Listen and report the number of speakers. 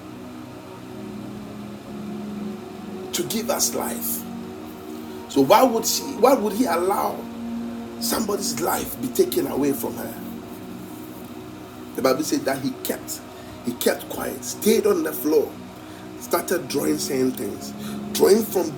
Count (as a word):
one